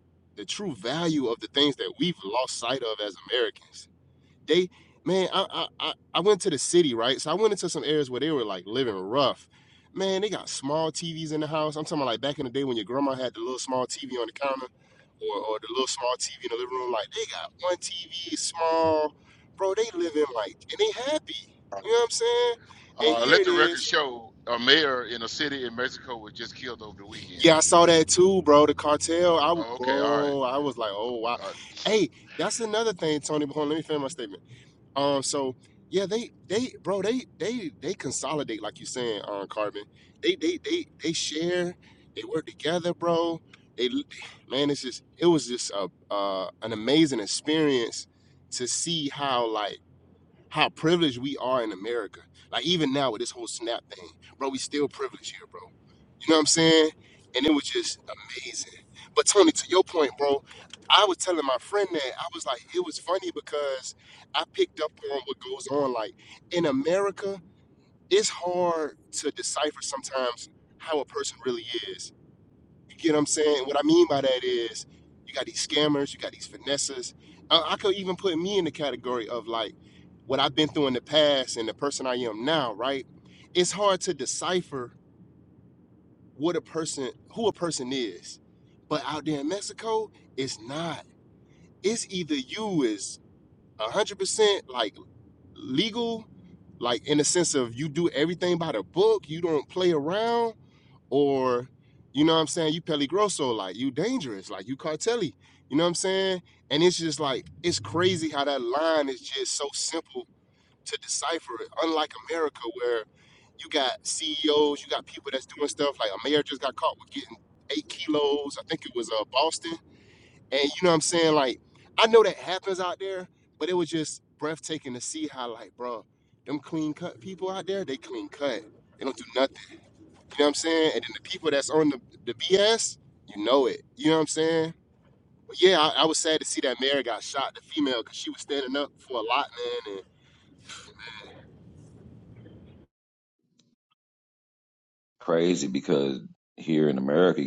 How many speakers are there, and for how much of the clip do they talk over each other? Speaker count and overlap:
3, about 1%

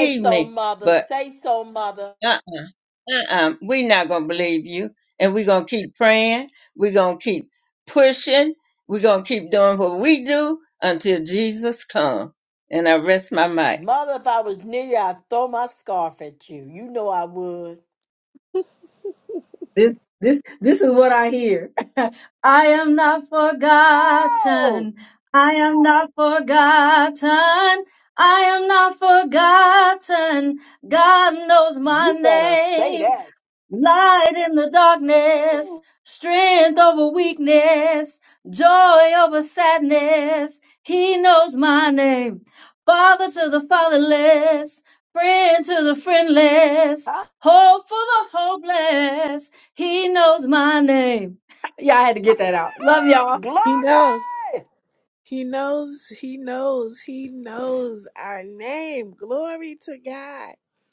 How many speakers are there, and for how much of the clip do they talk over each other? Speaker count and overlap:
4, about 5%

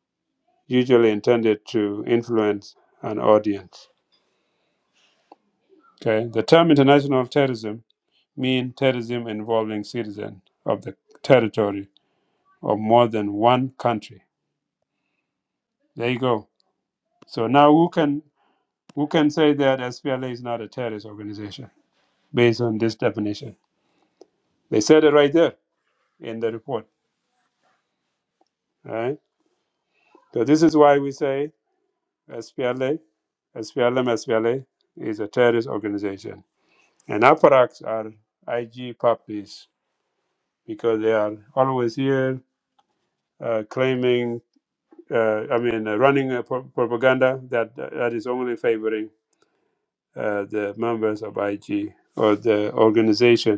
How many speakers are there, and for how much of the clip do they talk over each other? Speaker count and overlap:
1, no overlap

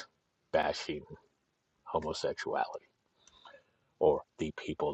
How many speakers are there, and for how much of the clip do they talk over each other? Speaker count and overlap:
1, no overlap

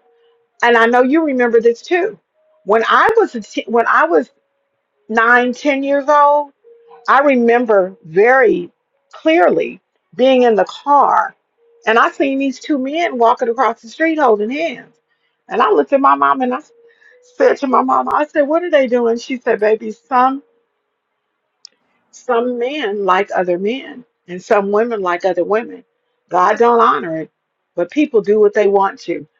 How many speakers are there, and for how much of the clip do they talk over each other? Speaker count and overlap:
1, no overlap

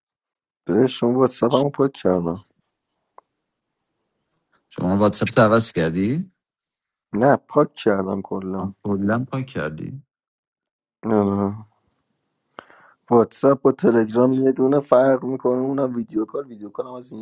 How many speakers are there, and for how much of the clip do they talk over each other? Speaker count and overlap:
2, under 1%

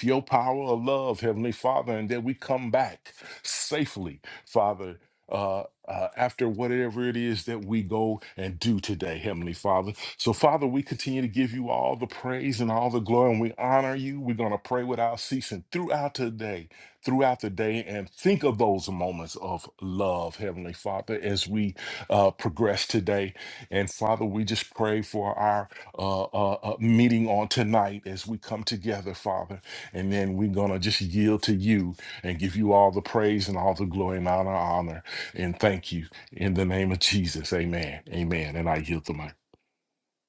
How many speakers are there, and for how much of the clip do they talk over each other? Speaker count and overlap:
1, no overlap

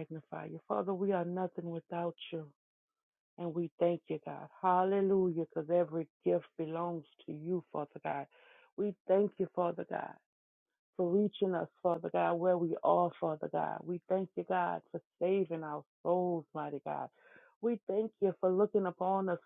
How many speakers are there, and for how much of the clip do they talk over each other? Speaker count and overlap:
1, no overlap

